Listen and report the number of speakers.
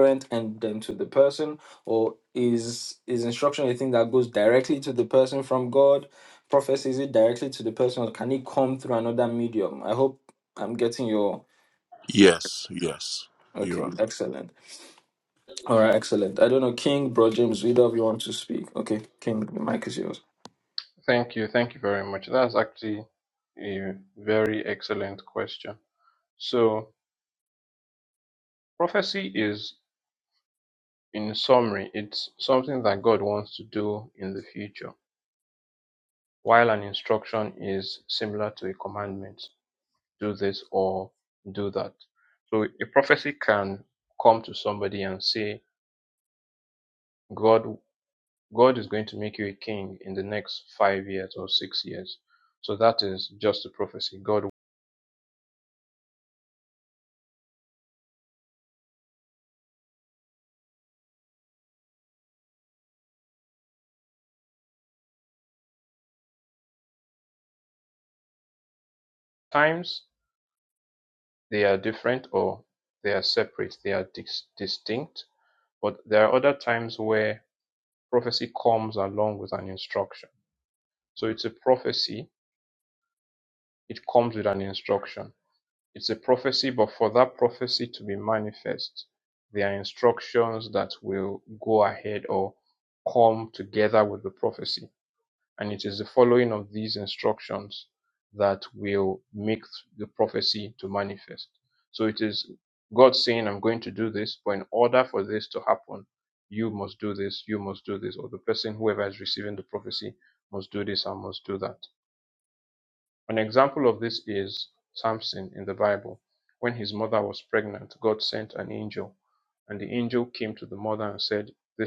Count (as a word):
three